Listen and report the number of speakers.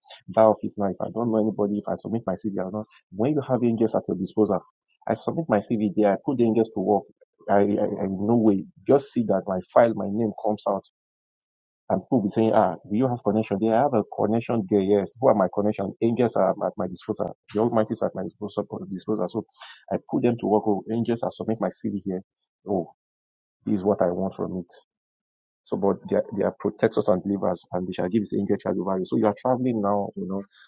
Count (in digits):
1